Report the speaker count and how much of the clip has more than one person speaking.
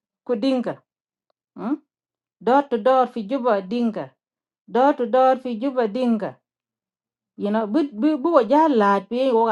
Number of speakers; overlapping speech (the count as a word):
one, no overlap